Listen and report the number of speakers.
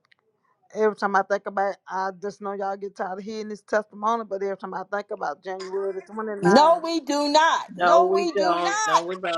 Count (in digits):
3